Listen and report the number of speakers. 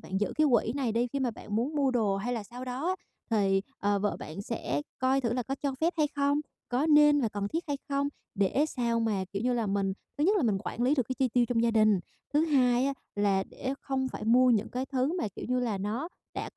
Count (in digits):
1